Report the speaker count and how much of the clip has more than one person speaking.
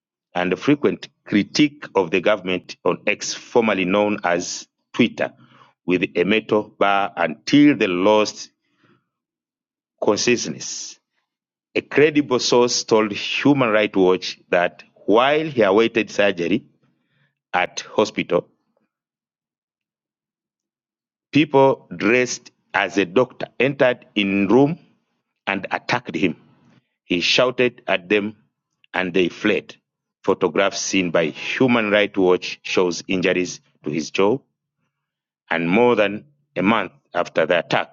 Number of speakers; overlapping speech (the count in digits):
1, no overlap